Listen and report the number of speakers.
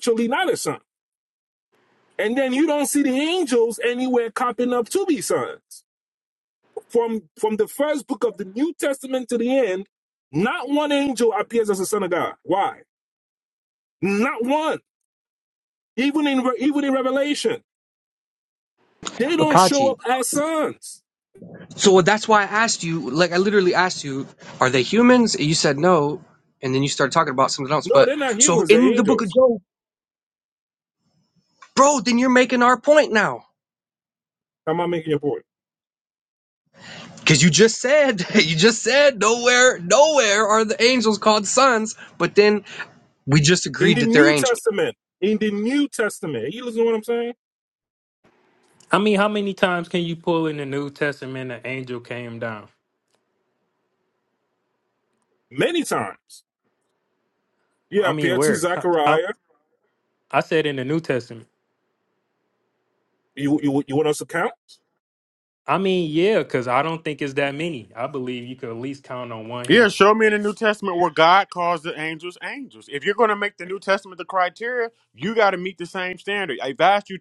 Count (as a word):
four